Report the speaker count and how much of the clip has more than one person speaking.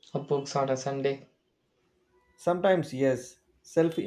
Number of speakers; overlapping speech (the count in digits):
2, no overlap